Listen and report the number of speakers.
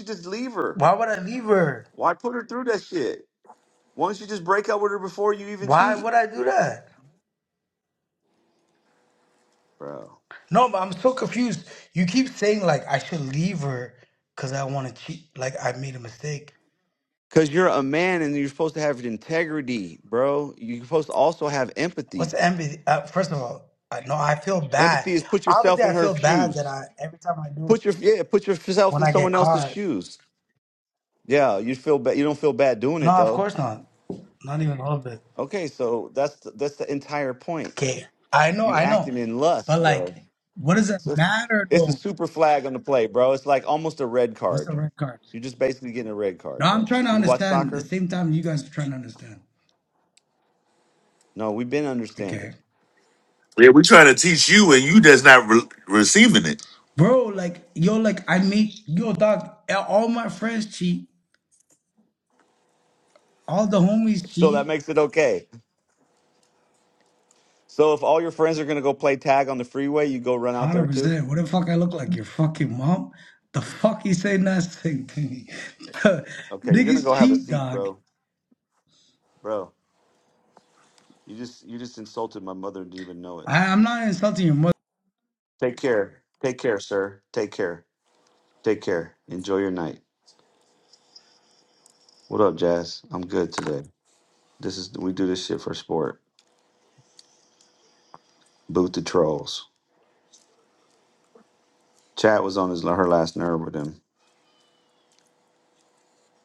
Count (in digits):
3